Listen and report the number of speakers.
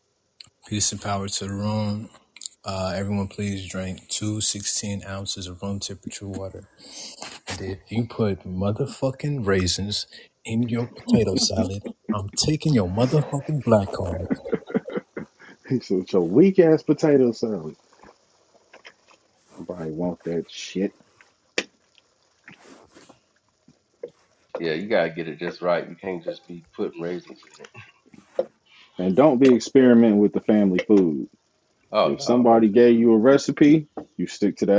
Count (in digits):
3